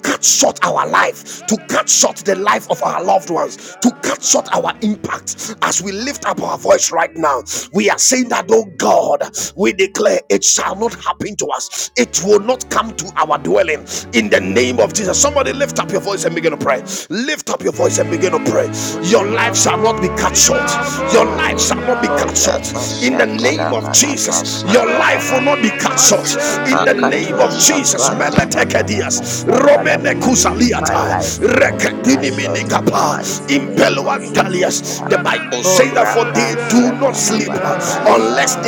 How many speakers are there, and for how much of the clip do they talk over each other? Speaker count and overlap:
2, about 35%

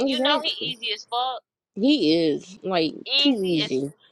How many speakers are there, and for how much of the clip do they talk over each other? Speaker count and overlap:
2, about 32%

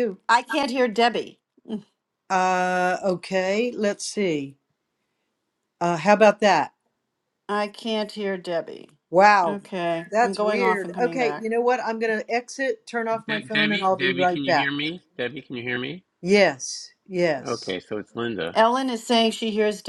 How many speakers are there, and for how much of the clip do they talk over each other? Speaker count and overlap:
3, about 16%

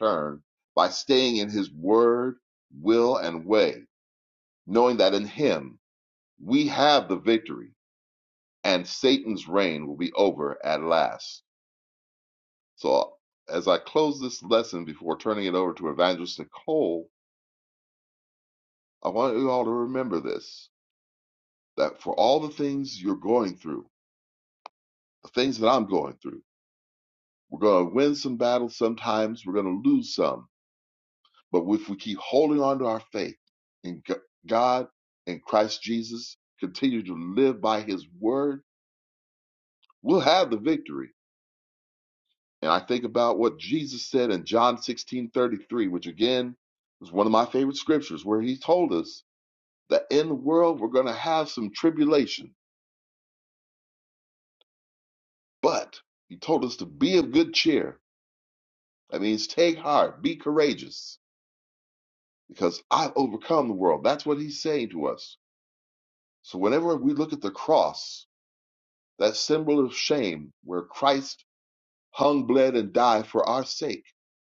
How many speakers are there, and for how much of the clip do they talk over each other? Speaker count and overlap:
1, no overlap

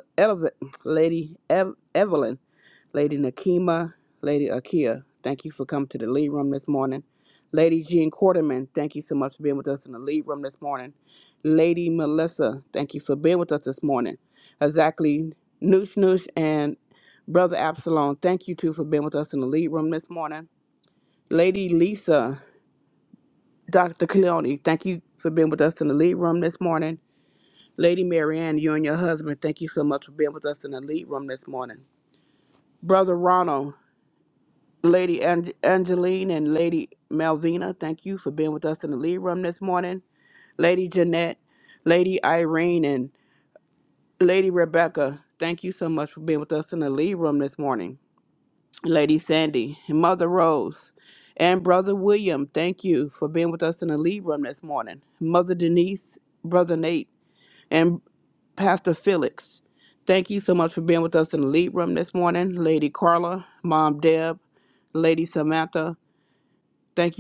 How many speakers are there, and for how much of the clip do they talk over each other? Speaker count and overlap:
1, no overlap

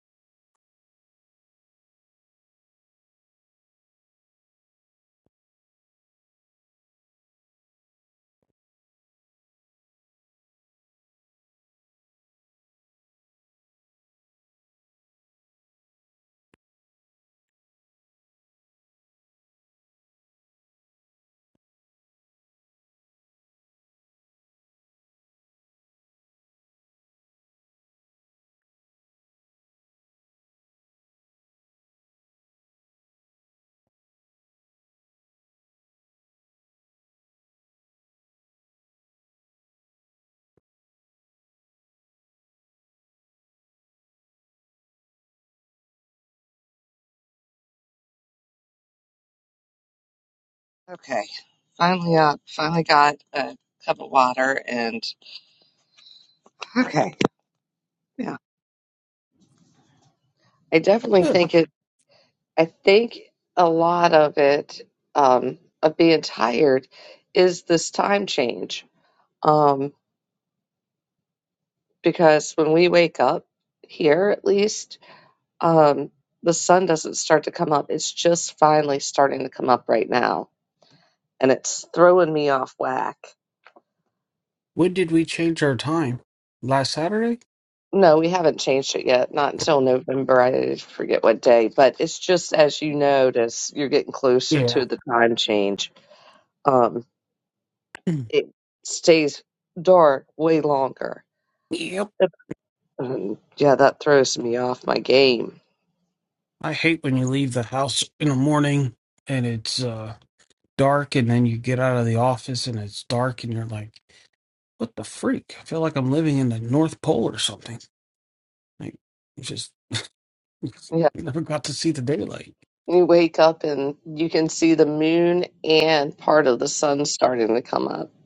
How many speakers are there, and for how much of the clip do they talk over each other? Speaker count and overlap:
2, under 1%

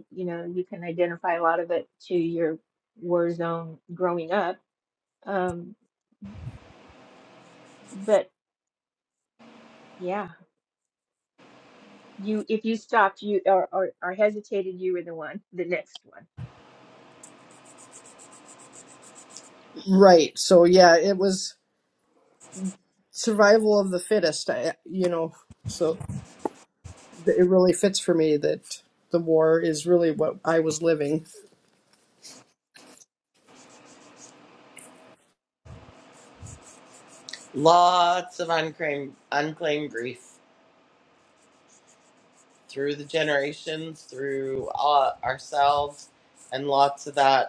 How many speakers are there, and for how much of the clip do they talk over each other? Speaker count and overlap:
3, no overlap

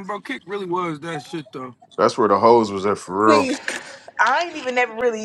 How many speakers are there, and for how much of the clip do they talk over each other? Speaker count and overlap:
3, about 5%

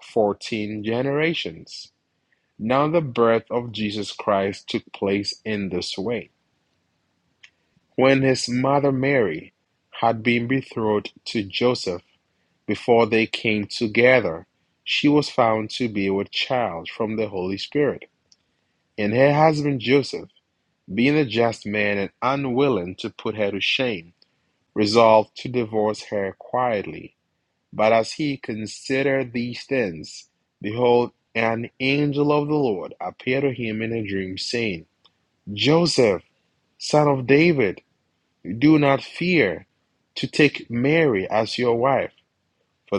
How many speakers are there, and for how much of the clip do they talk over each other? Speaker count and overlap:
1, no overlap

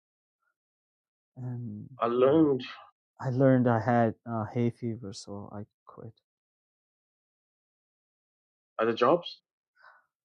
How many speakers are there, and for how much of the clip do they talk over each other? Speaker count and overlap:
2, no overlap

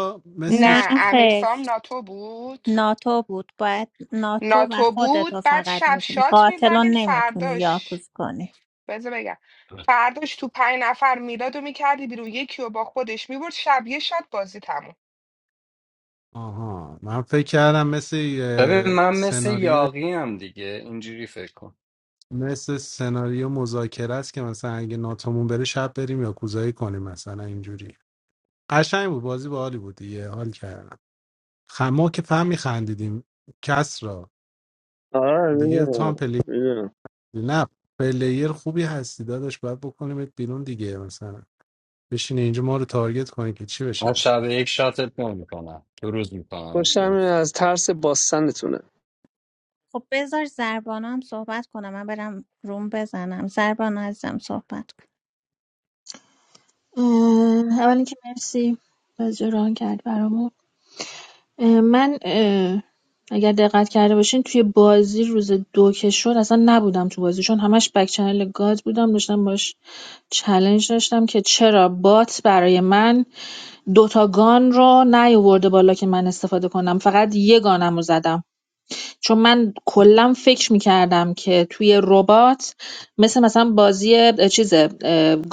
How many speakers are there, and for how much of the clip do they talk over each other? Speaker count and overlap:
6, about 9%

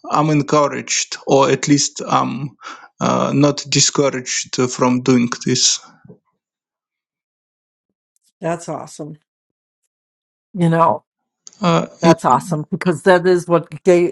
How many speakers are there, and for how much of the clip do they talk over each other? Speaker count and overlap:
2, about 1%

